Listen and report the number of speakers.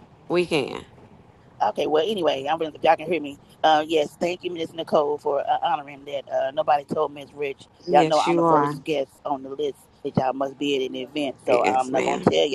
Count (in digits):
2